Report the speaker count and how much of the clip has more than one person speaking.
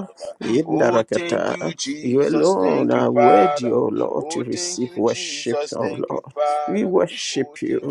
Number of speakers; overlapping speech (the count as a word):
two, about 73%